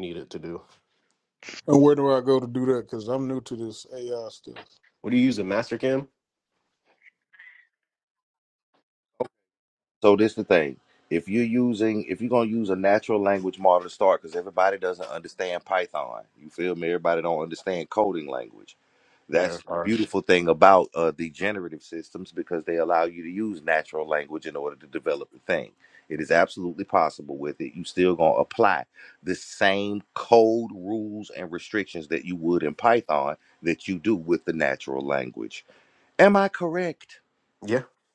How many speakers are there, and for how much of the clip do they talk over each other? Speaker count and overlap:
three, no overlap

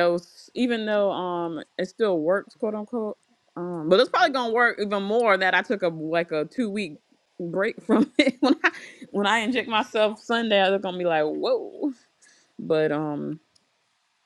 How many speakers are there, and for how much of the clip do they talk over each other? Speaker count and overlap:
one, no overlap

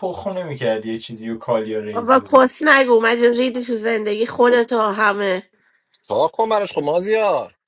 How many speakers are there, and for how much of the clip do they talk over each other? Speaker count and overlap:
three, about 7%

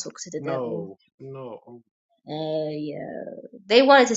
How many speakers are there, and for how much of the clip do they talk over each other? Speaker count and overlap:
two, about 12%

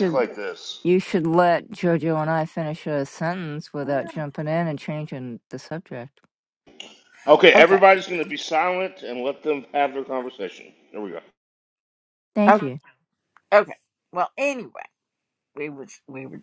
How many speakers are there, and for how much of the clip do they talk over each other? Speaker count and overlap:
three, about 7%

